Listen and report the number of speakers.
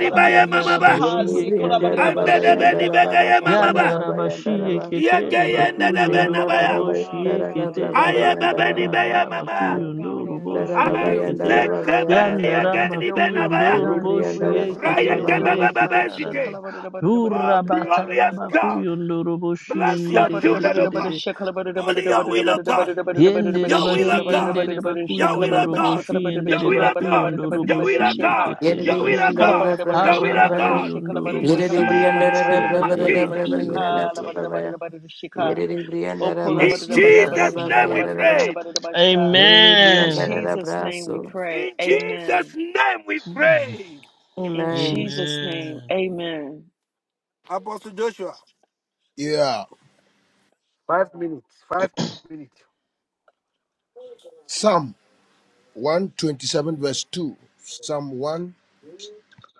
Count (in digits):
5